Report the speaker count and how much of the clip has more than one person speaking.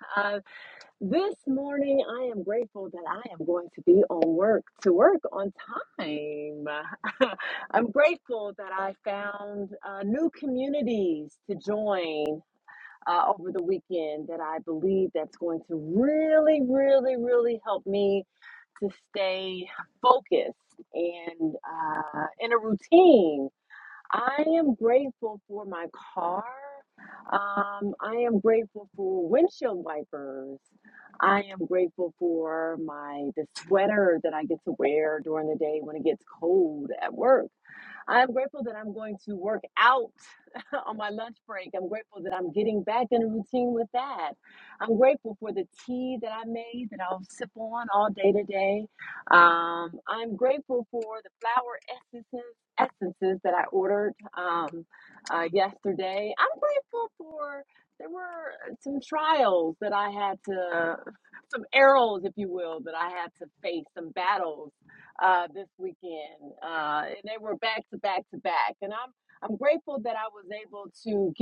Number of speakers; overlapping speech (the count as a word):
one, no overlap